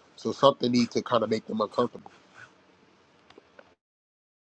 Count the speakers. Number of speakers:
one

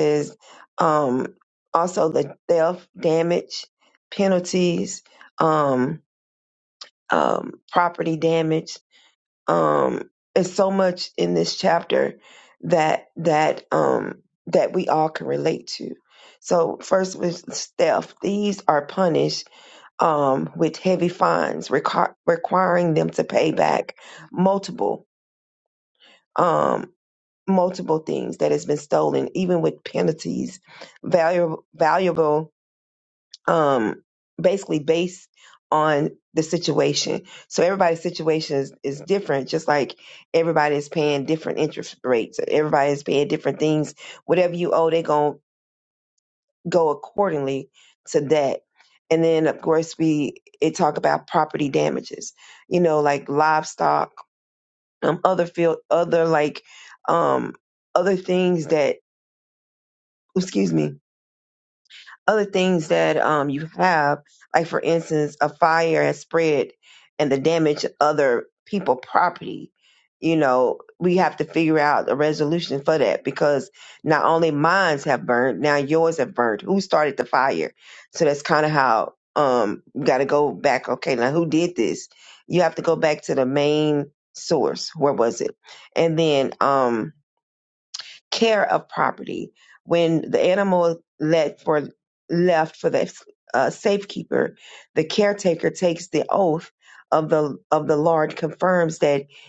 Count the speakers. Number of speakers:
one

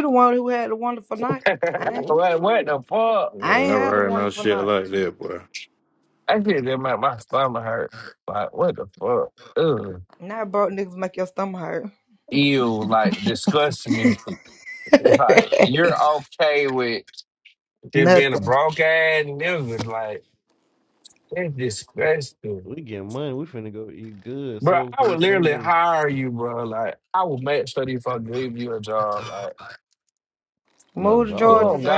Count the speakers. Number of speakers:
four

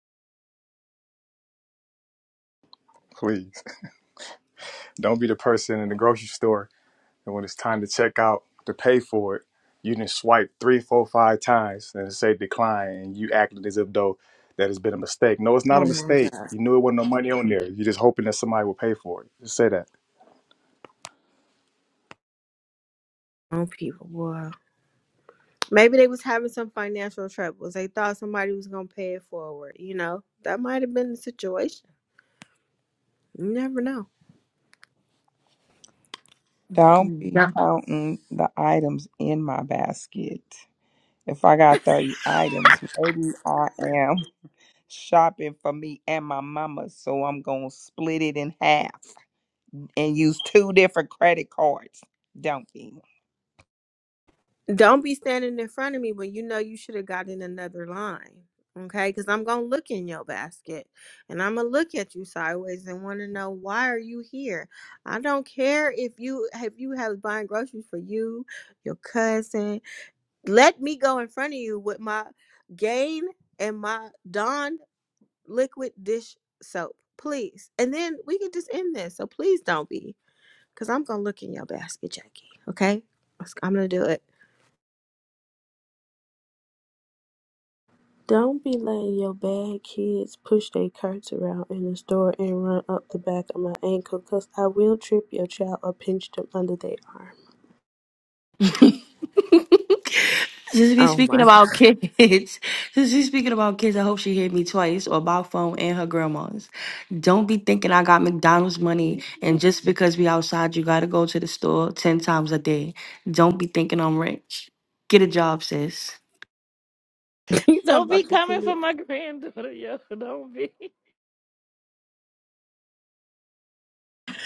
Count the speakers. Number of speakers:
six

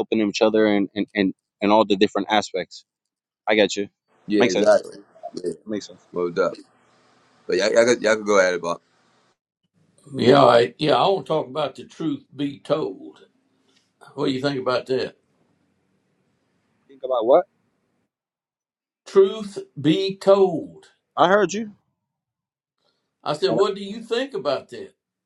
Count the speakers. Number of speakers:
three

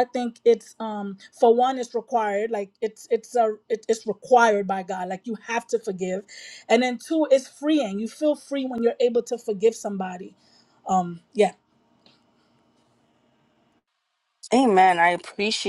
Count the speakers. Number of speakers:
two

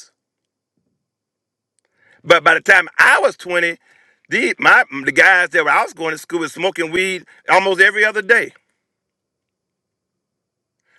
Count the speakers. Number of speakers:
one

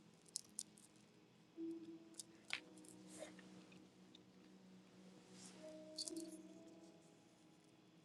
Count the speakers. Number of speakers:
zero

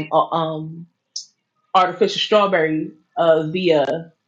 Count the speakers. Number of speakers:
one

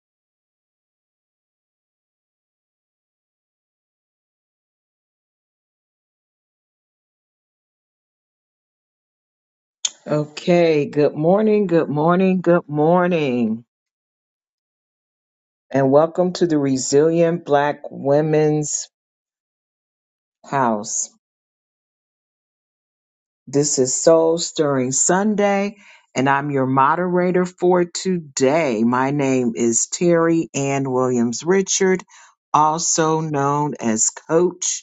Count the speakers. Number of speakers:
one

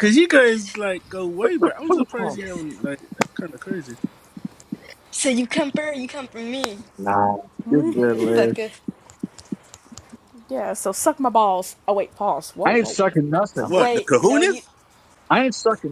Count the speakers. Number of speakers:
four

